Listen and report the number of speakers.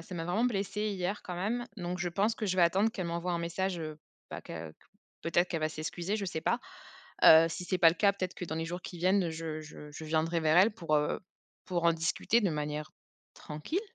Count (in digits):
1